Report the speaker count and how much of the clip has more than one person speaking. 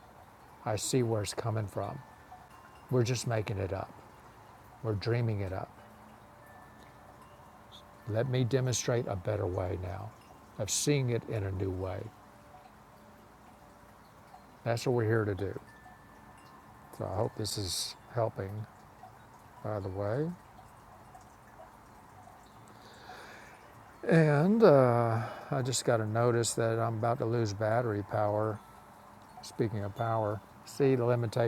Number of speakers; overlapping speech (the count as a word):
one, no overlap